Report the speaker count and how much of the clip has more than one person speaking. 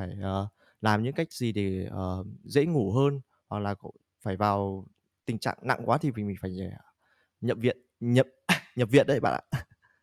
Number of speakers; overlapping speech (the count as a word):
one, no overlap